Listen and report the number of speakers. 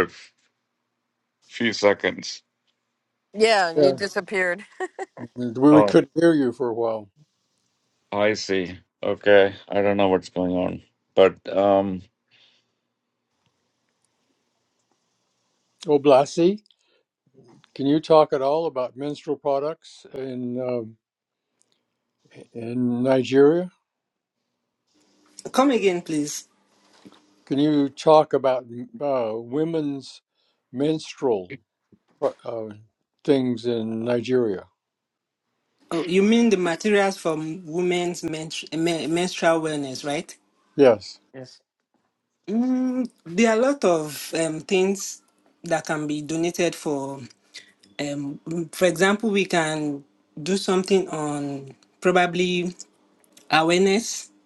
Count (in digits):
4